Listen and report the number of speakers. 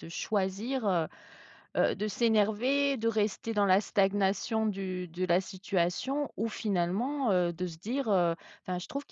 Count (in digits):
1